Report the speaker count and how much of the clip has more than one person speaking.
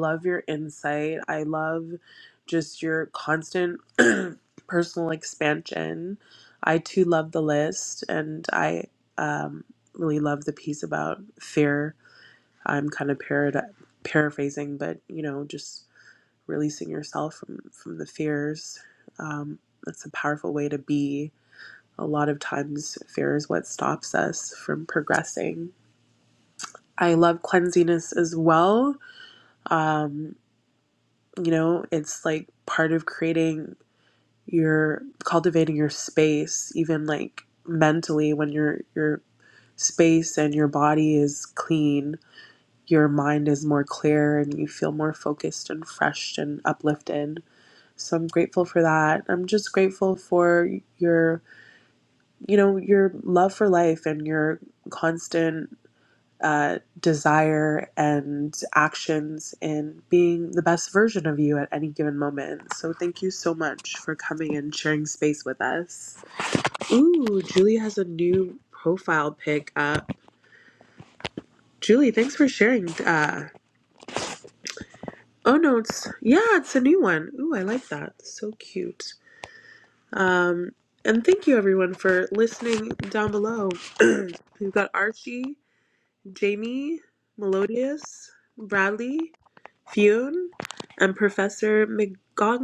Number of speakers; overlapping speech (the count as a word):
one, no overlap